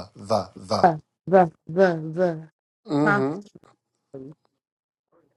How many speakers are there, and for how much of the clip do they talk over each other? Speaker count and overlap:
2, about 5%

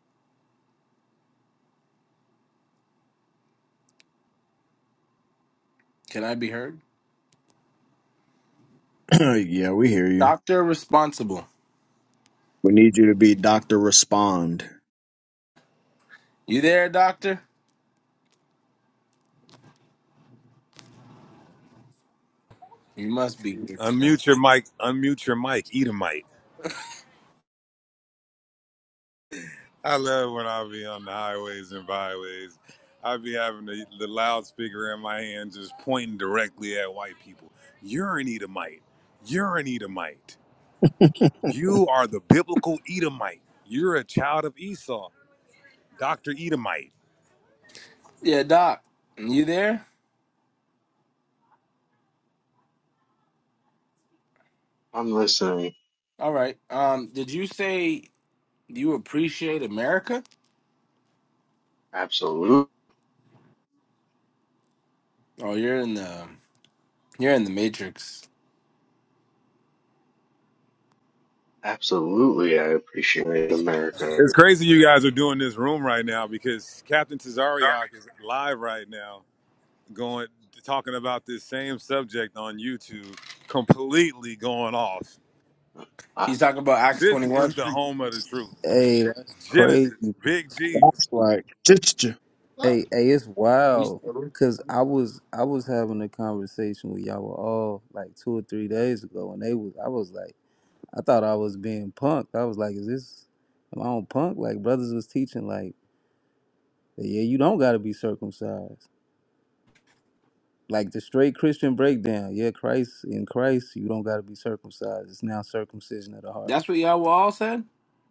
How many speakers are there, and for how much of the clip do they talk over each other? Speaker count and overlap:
5, about 1%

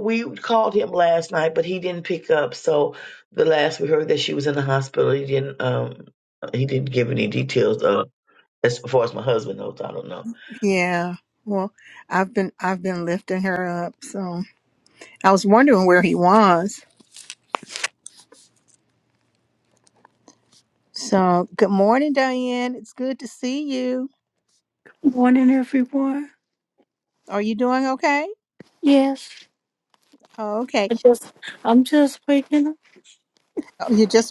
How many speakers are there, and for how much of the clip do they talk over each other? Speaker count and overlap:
3, no overlap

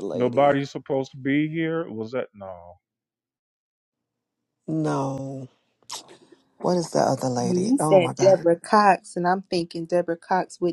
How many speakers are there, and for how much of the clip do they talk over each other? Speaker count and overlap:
3, about 13%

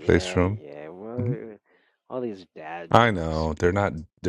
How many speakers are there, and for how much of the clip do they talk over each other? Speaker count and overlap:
2, about 30%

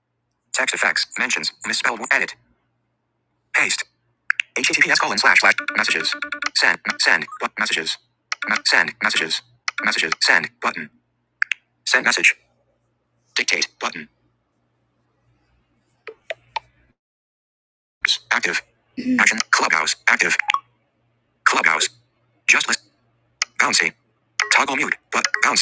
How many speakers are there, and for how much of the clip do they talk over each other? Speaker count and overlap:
1, no overlap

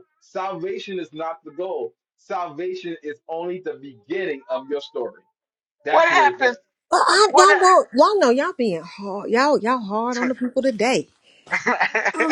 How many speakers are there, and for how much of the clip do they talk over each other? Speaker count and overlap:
3, about 7%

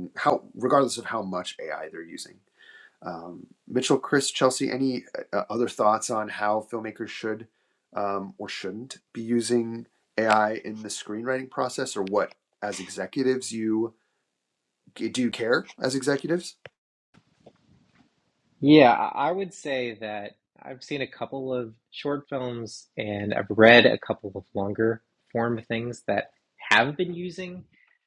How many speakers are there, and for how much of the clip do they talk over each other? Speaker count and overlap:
2, no overlap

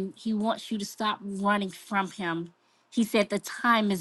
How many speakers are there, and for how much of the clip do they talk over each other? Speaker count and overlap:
1, no overlap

